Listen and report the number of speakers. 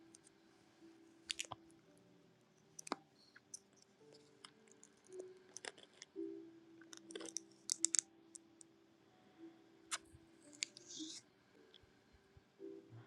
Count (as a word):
zero